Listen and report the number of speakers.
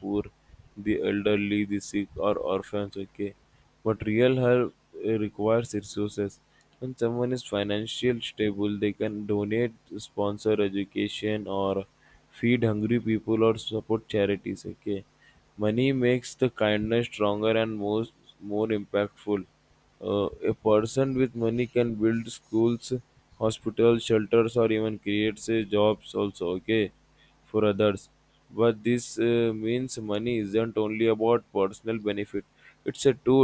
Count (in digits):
1